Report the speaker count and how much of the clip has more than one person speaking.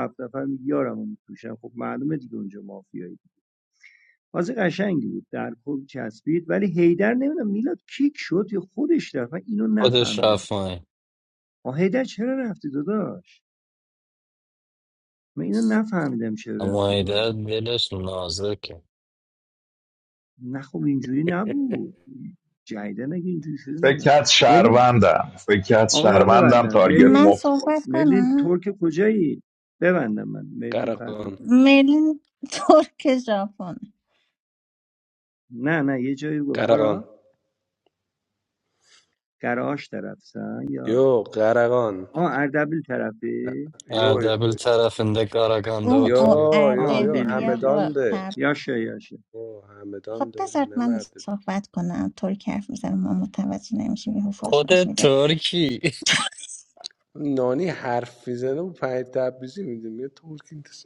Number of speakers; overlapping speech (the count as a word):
five, about 16%